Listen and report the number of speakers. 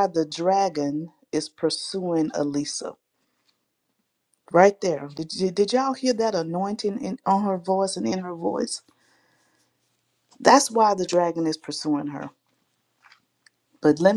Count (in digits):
1